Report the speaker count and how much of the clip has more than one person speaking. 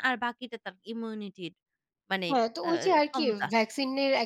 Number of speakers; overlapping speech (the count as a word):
two, about 20%